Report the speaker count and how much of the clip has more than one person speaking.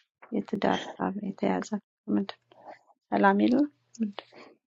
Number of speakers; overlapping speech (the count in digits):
1, no overlap